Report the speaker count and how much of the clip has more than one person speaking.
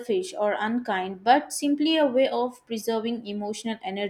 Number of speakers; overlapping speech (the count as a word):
one, no overlap